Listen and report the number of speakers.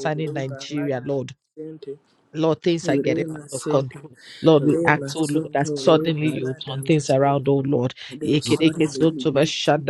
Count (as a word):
two